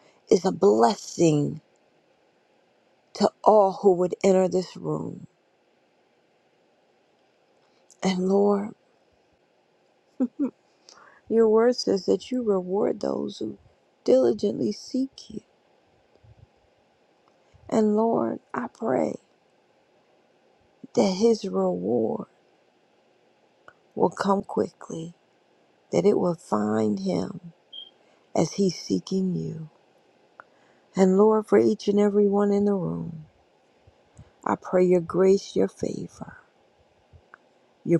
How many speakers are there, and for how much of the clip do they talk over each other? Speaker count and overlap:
one, no overlap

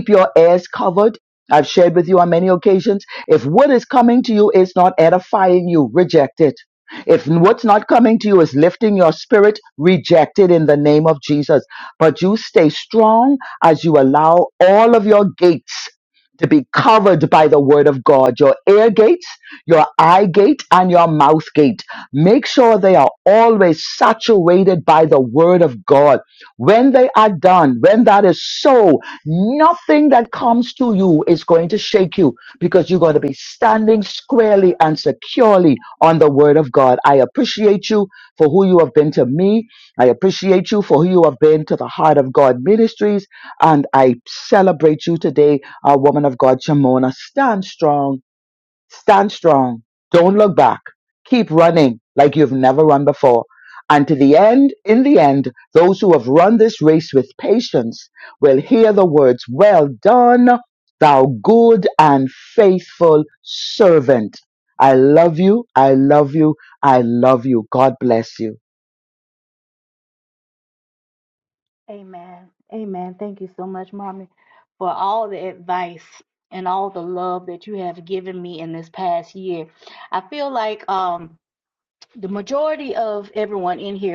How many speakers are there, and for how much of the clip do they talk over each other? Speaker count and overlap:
two, no overlap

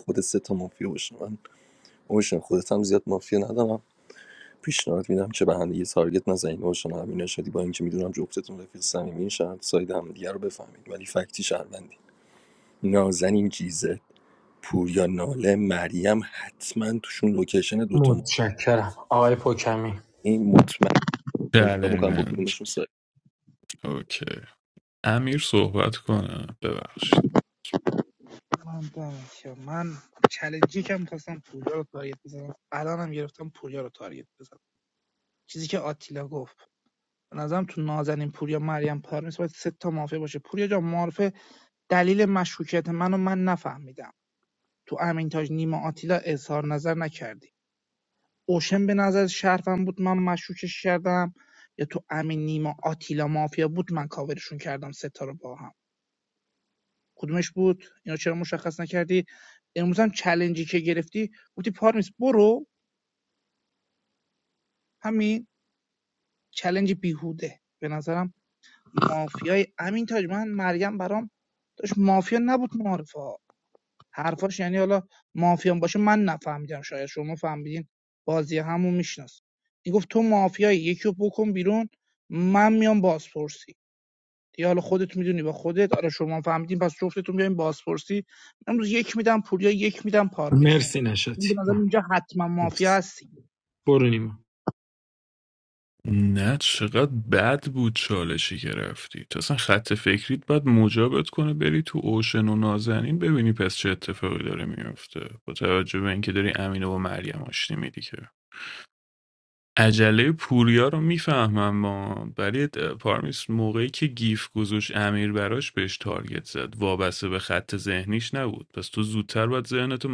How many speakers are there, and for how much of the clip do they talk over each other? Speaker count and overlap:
four, about 2%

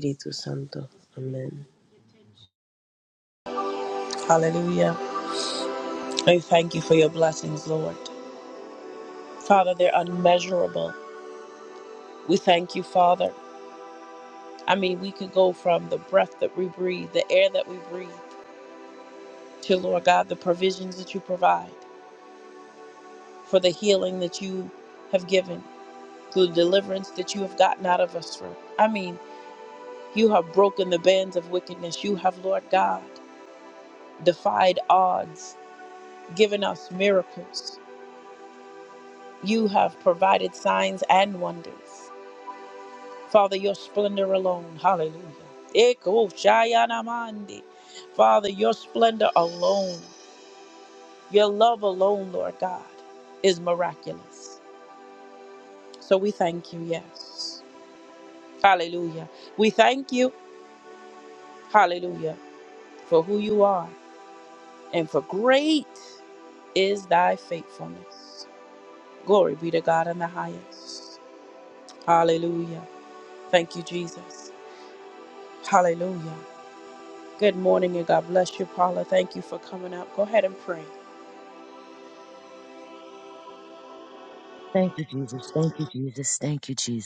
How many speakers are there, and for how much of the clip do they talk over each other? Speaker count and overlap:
three, no overlap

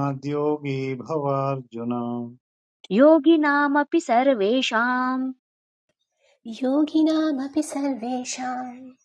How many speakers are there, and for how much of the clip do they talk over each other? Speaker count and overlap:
three, no overlap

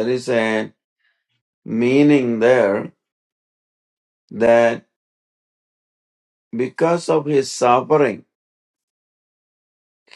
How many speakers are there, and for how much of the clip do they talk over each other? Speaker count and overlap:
one, no overlap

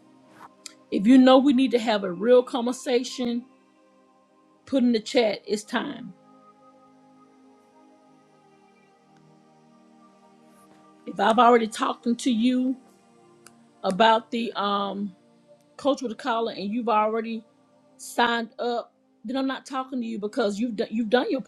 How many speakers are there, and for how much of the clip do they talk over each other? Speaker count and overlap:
one, no overlap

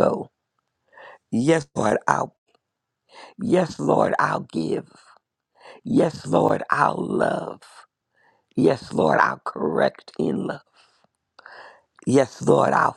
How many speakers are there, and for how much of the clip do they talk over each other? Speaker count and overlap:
one, no overlap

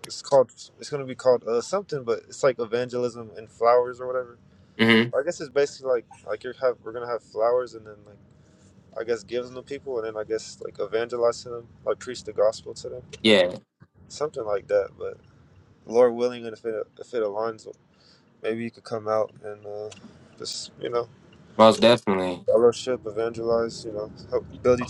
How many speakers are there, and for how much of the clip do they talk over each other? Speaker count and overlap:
two, no overlap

